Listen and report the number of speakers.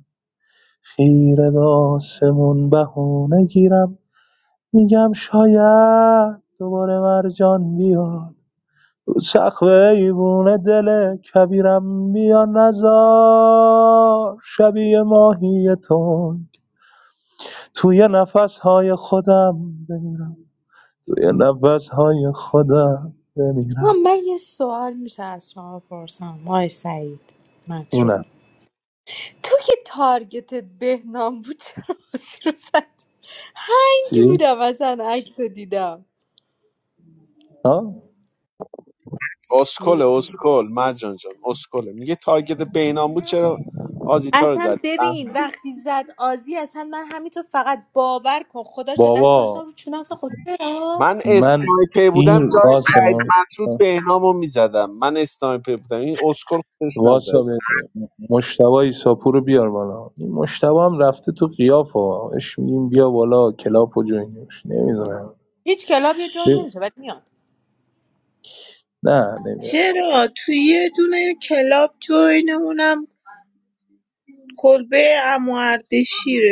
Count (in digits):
4